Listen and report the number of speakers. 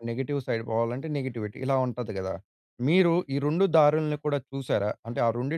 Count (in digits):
1